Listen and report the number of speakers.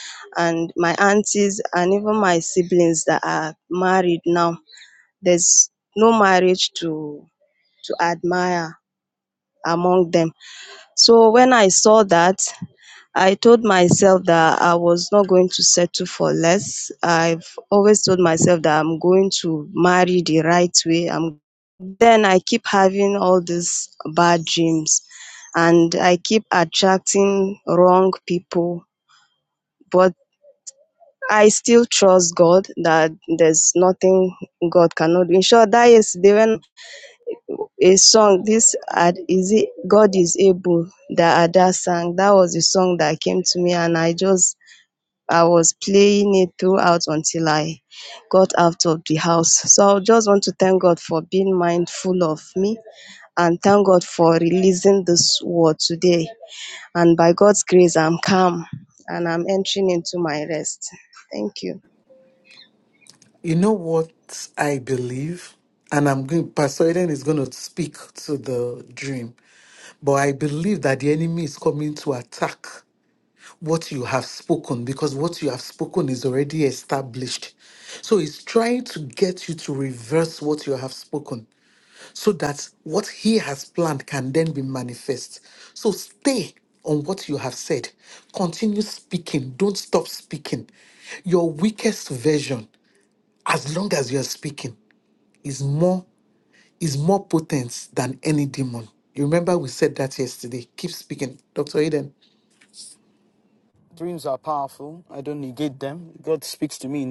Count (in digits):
3